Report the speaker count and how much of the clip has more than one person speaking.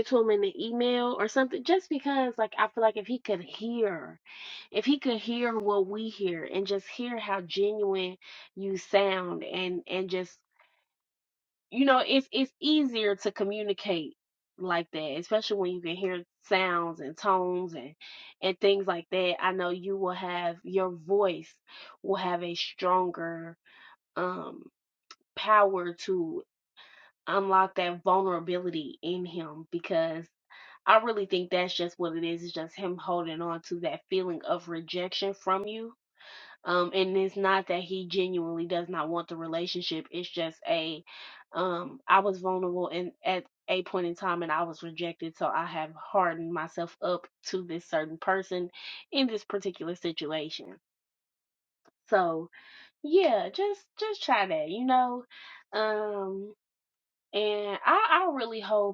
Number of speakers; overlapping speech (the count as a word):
one, no overlap